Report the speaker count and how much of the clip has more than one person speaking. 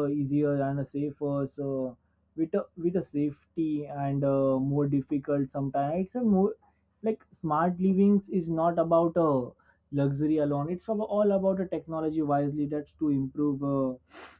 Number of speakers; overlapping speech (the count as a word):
one, no overlap